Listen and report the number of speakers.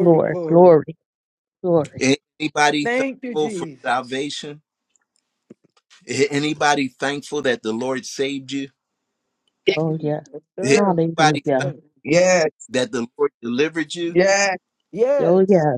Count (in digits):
4